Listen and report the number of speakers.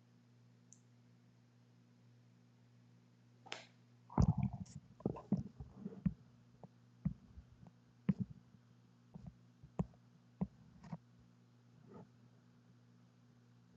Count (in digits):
0